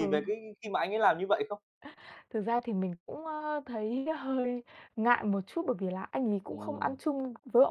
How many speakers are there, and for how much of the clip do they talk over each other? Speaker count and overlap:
two, about 7%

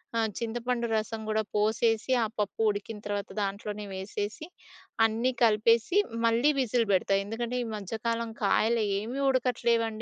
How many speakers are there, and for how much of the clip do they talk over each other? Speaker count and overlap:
one, no overlap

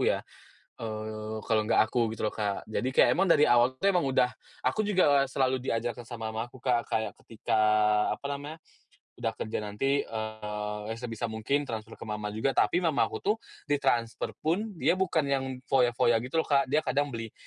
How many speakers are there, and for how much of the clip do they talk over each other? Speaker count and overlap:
one, no overlap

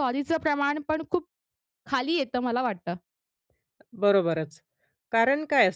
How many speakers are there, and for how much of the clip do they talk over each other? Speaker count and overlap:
two, no overlap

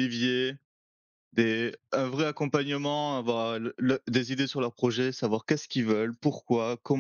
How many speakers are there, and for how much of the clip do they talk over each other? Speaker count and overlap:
one, no overlap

